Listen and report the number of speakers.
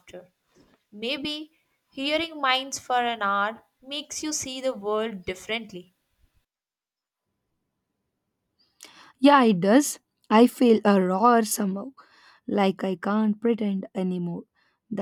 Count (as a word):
two